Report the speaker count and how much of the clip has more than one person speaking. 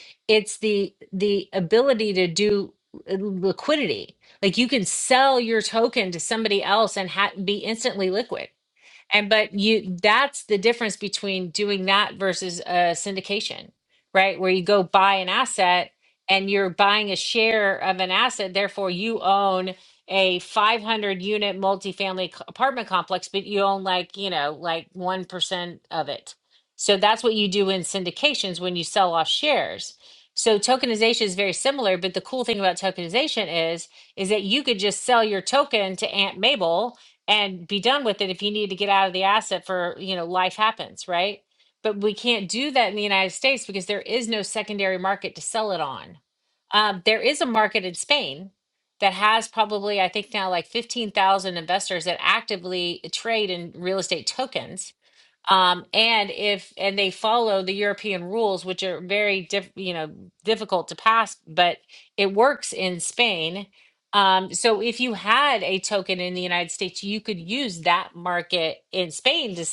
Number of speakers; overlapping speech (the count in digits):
1, no overlap